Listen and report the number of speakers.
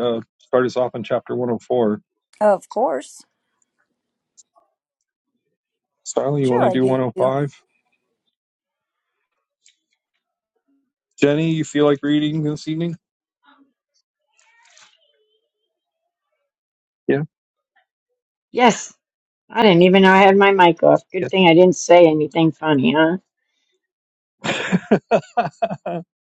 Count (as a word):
three